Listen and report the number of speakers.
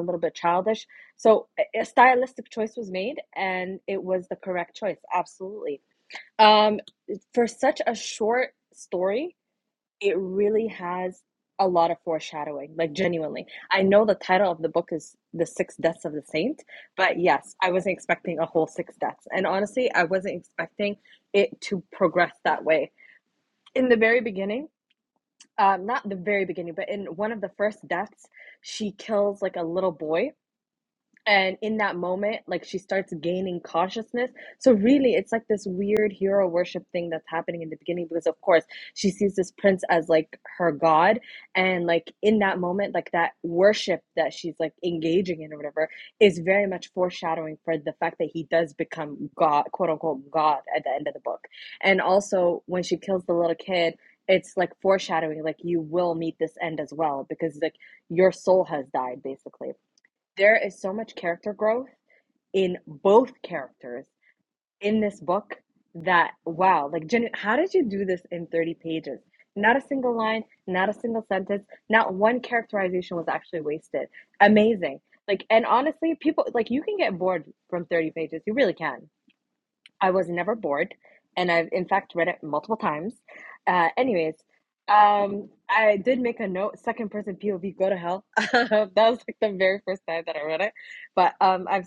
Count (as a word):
one